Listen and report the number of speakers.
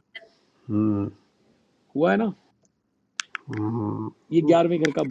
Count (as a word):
two